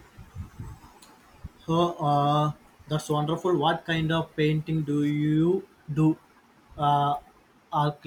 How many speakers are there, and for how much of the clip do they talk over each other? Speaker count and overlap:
1, no overlap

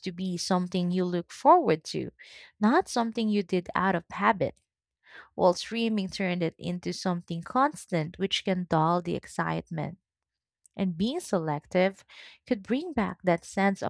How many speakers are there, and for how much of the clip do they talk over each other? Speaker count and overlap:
1, no overlap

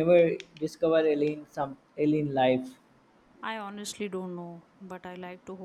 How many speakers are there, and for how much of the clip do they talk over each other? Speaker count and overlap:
2, no overlap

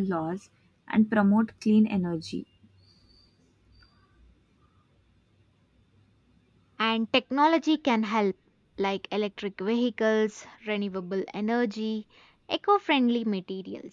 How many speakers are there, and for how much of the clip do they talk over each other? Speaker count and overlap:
2, no overlap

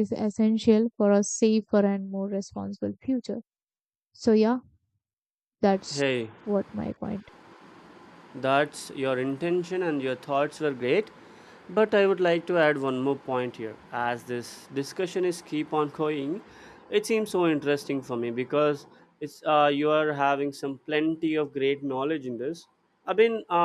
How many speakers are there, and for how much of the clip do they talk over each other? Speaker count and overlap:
2, under 1%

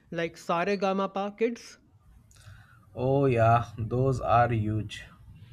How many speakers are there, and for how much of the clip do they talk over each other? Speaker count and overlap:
2, no overlap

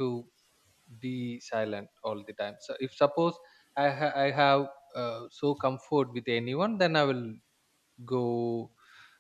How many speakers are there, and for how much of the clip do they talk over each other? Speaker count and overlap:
1, no overlap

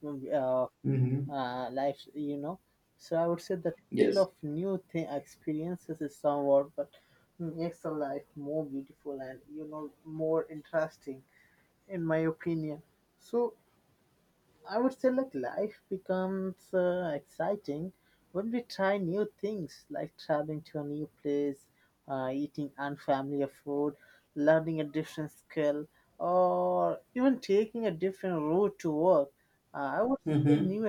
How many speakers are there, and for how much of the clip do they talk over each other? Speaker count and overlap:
2, about 3%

